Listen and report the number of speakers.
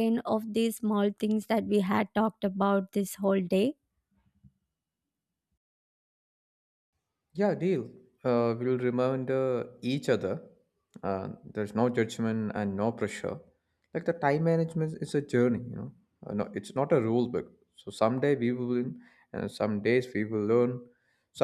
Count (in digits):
2